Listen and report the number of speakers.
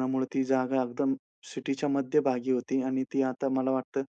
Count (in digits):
1